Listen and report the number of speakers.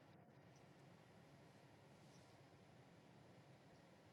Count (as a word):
zero